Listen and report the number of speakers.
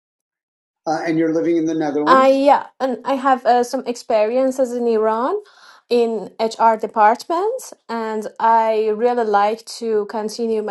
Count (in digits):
2